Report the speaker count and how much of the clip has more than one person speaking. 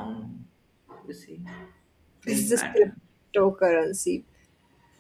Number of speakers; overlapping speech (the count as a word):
two, about 7%